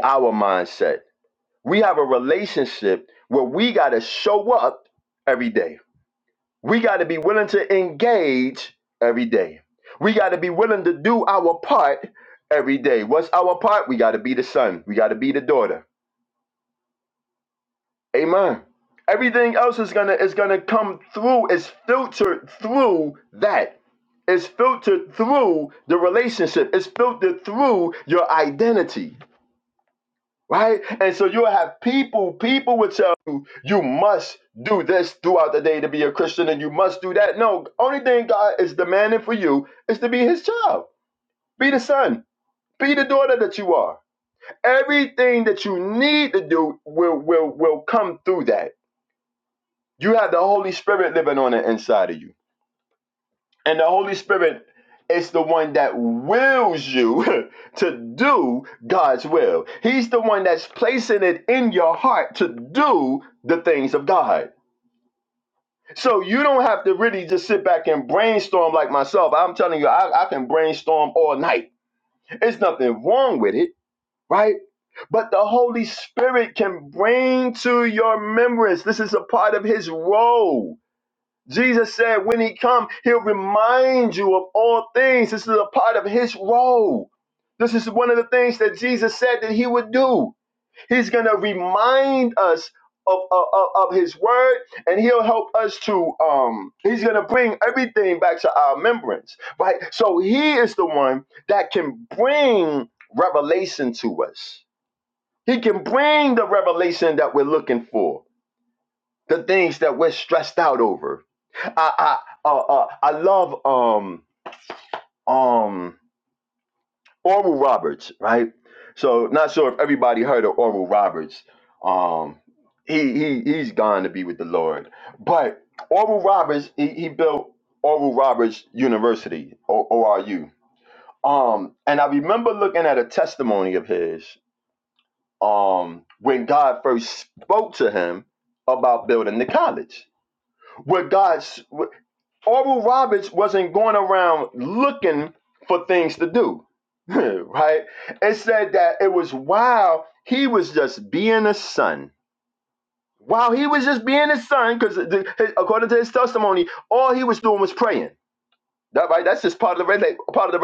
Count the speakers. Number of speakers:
1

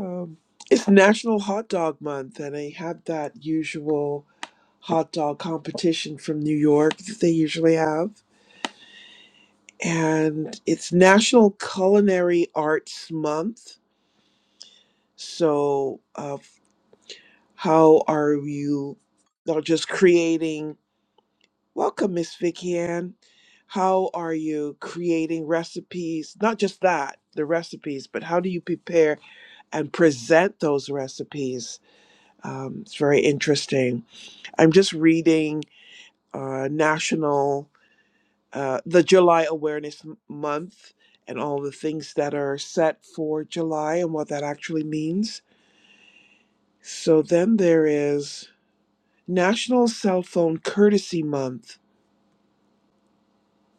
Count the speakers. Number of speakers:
1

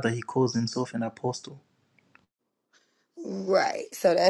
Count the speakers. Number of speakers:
2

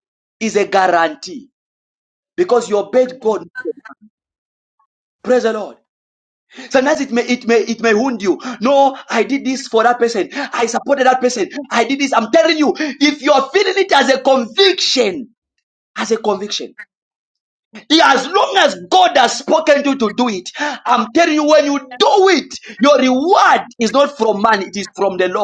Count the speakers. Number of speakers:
1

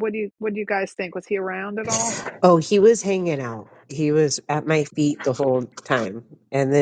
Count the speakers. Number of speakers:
2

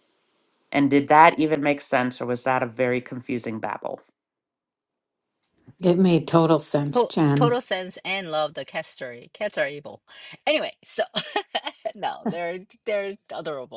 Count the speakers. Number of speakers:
3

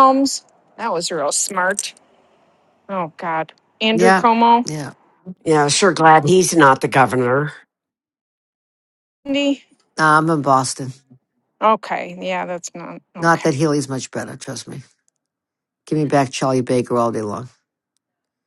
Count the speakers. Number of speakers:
3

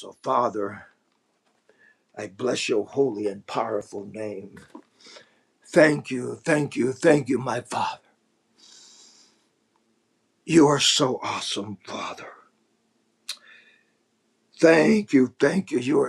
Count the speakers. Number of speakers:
1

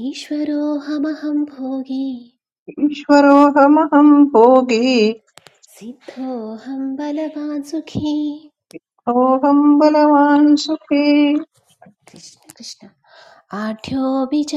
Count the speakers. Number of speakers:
2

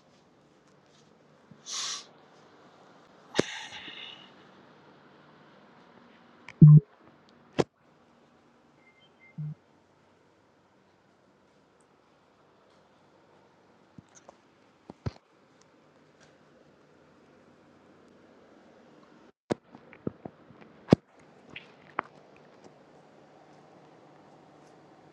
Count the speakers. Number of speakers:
0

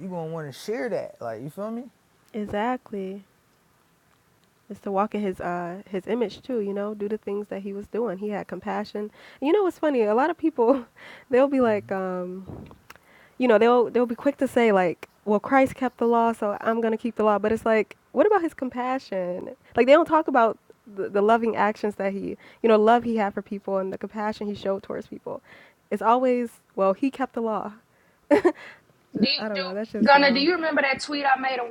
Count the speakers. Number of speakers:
3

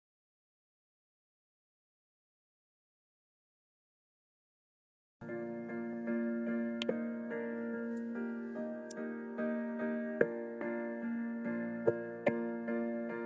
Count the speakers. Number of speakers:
0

